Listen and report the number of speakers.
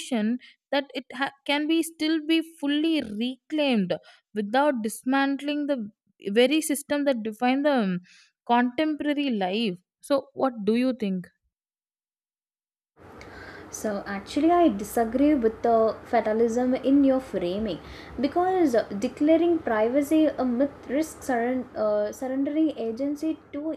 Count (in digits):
2